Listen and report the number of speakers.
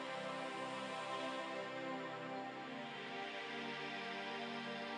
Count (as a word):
zero